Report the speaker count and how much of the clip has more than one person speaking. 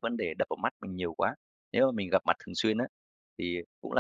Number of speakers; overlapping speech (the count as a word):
one, no overlap